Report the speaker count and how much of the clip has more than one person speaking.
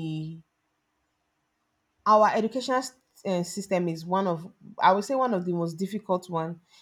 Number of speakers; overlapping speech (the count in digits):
1, no overlap